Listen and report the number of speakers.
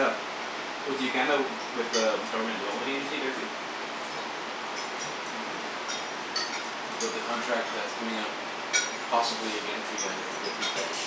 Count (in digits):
2